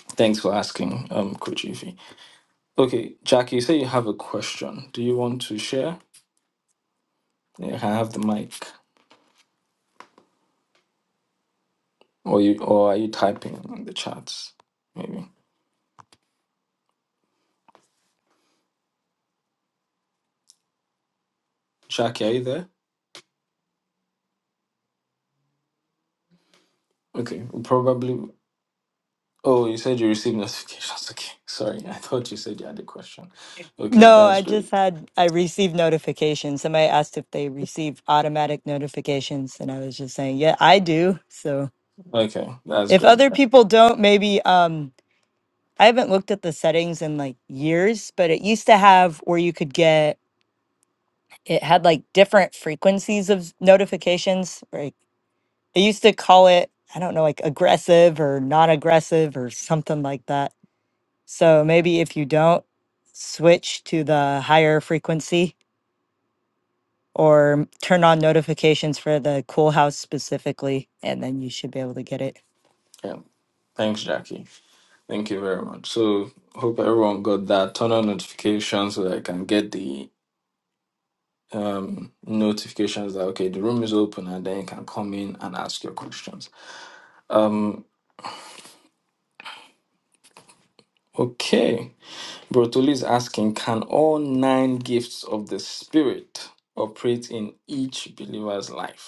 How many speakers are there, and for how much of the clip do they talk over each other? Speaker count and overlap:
two, about 1%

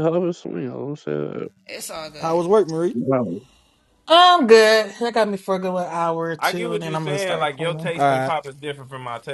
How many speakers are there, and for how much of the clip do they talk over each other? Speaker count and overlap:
four, about 19%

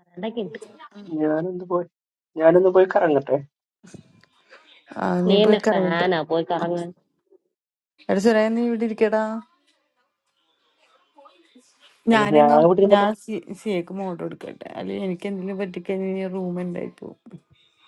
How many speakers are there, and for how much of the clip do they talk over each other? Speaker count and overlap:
three, about 10%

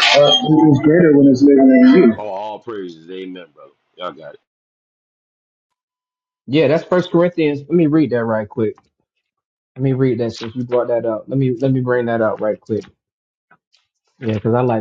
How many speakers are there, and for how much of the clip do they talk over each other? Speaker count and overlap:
three, about 1%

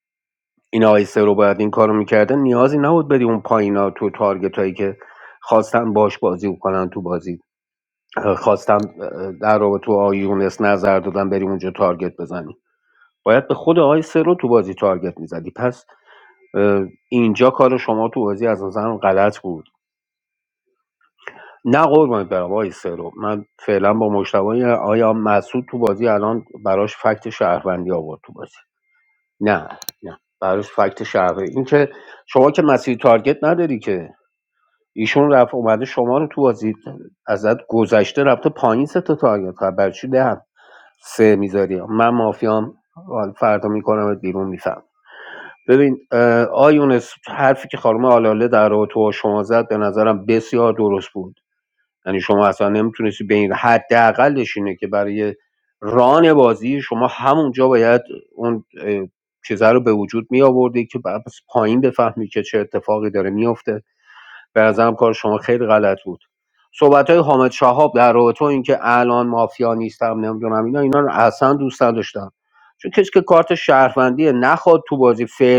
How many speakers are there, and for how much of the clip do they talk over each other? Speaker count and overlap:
one, no overlap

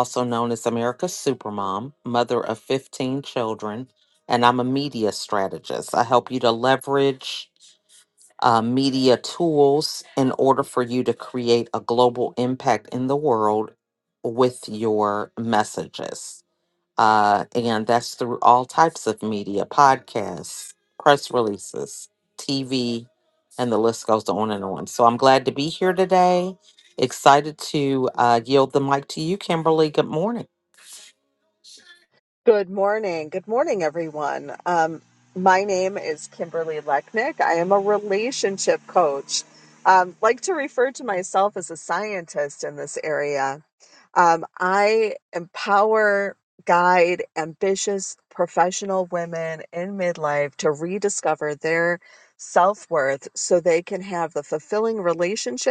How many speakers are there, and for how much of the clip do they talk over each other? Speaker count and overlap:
two, no overlap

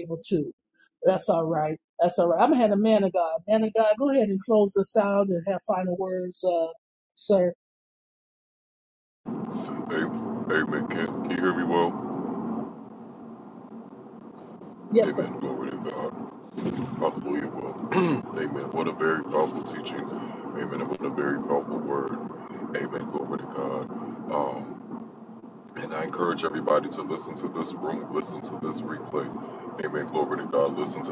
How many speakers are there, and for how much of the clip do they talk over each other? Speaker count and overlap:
two, about 1%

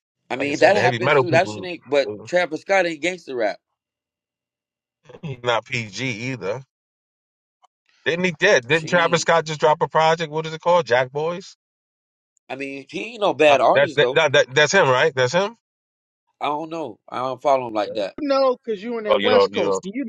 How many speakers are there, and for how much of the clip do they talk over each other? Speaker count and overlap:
three, about 16%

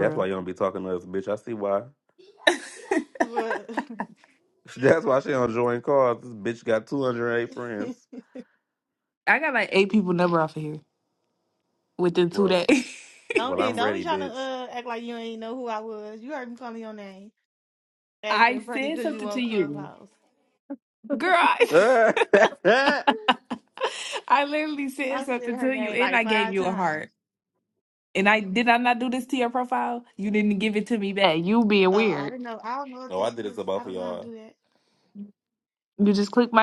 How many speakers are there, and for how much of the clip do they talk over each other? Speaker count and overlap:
three, about 17%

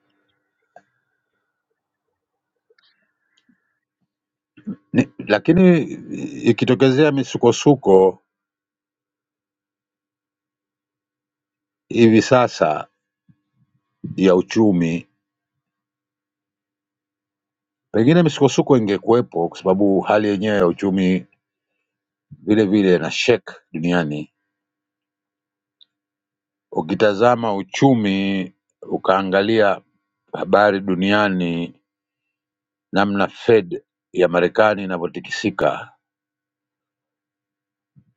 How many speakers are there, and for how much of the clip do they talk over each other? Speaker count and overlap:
one, no overlap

